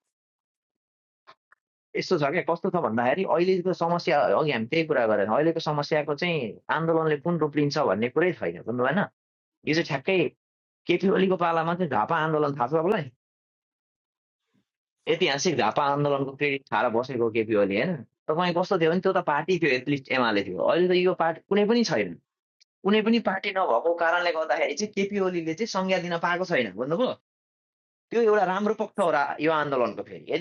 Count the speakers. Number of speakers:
1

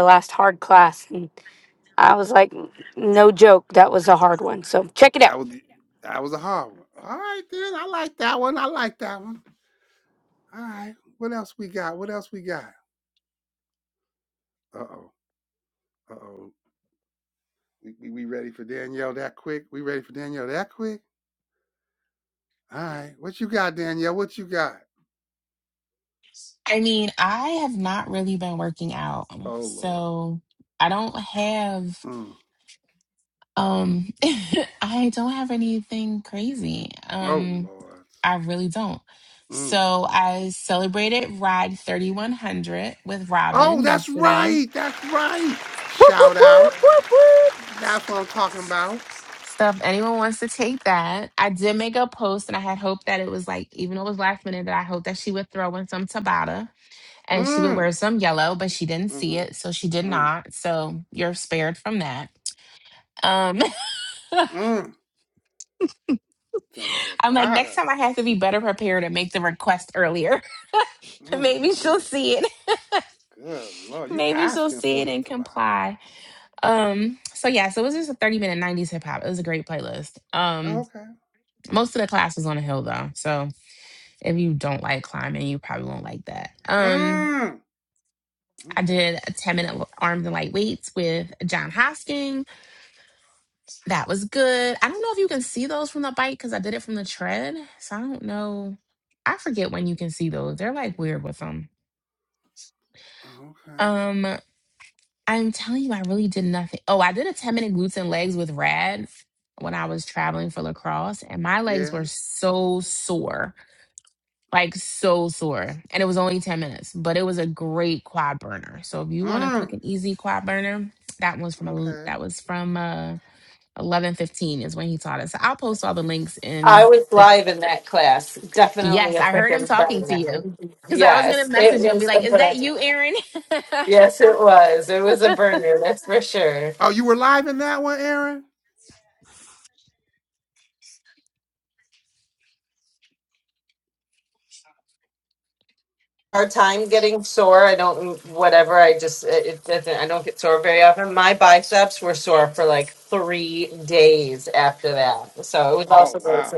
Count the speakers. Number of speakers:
4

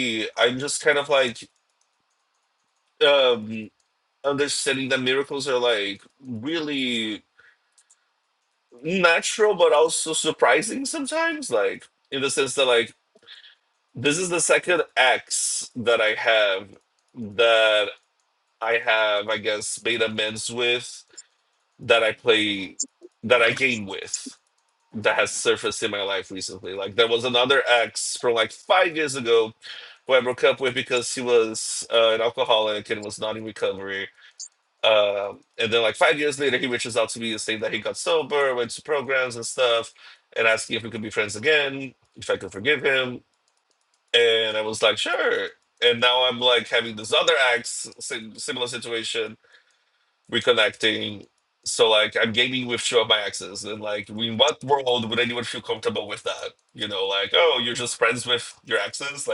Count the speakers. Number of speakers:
1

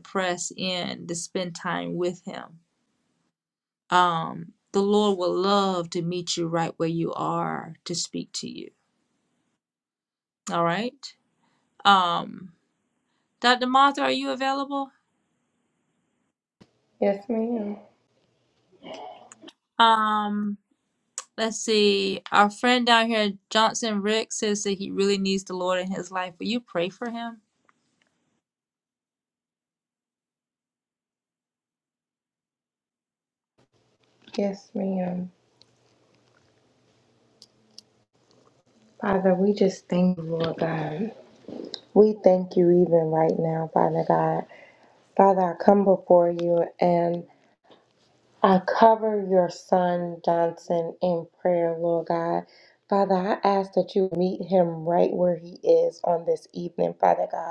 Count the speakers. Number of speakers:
2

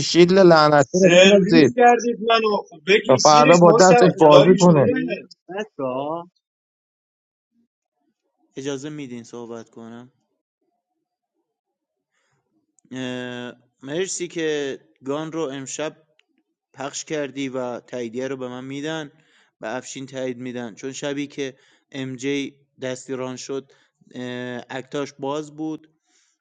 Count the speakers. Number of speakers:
3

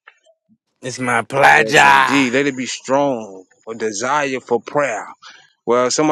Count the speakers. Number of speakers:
2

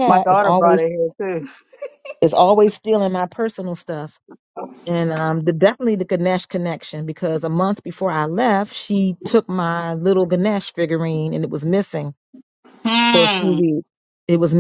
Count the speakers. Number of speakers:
2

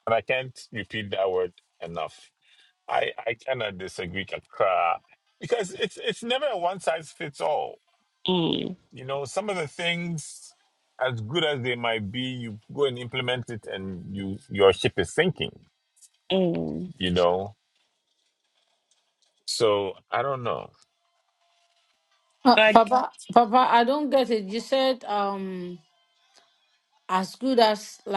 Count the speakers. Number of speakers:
3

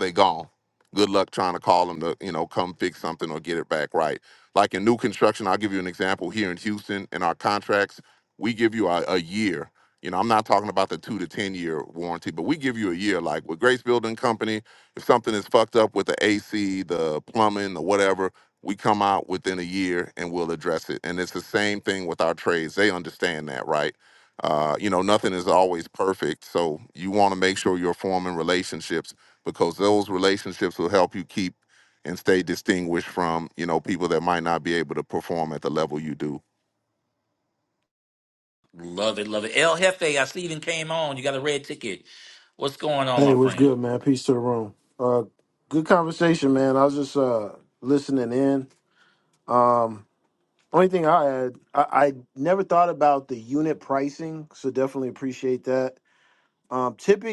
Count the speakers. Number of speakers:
3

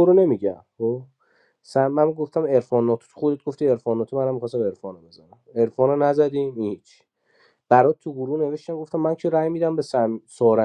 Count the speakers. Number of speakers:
1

